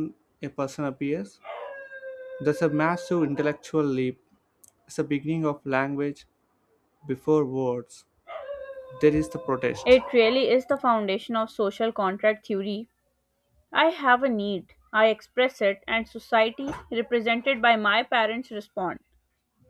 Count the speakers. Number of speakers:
two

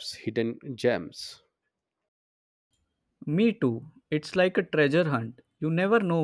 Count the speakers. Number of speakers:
two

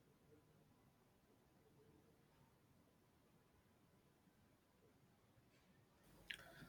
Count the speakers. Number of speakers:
zero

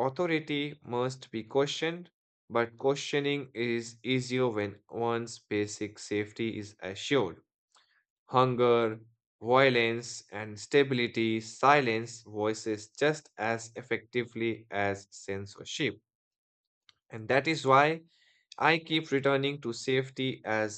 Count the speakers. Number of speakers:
one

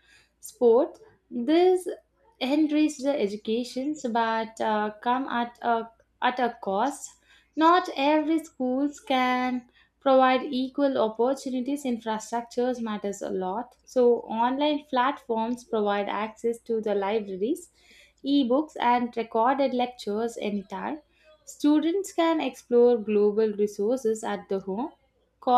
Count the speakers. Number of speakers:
one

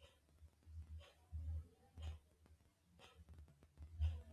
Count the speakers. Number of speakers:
zero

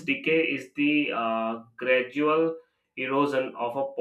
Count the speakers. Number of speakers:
one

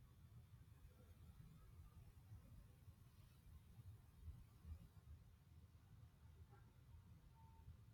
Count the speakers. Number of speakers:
zero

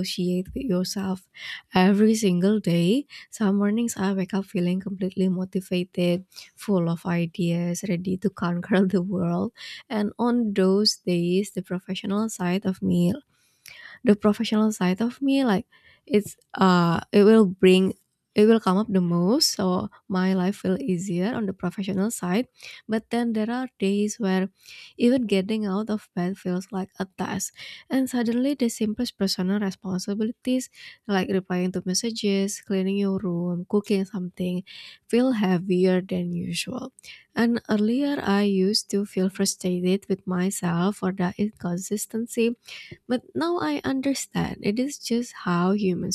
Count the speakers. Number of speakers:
one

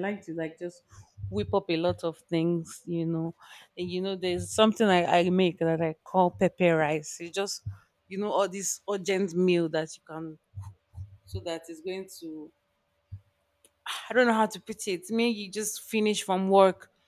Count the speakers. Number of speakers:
one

